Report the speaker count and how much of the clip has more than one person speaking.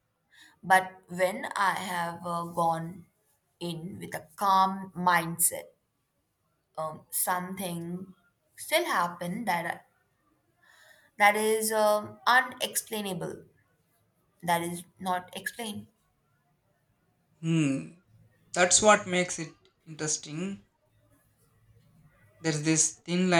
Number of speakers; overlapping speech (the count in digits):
2, no overlap